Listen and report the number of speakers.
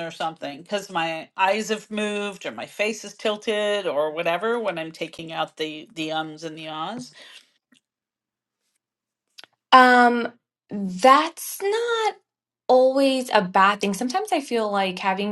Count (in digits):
2